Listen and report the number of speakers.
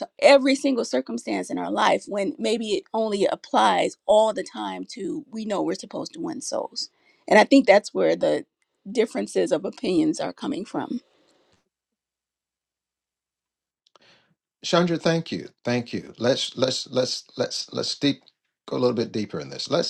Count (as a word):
two